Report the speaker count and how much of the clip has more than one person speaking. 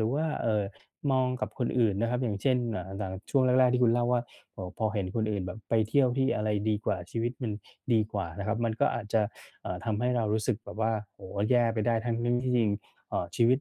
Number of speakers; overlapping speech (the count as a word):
one, no overlap